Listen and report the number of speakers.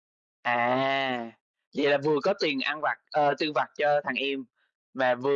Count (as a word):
one